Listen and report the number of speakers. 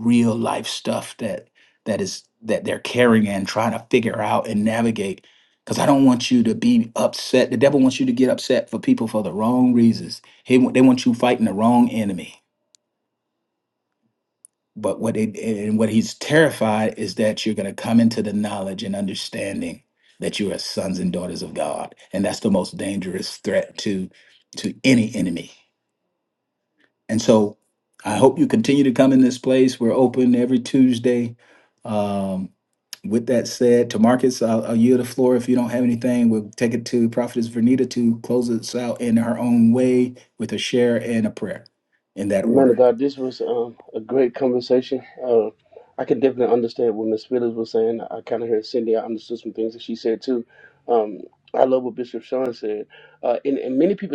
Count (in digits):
2